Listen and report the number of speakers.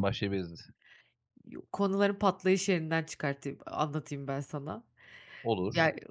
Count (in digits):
2